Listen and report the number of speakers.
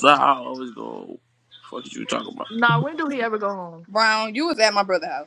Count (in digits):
3